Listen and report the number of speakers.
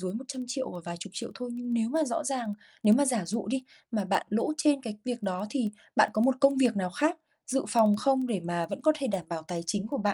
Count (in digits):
1